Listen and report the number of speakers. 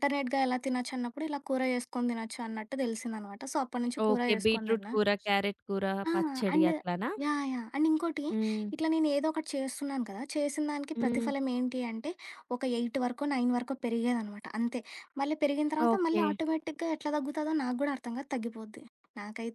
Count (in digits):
2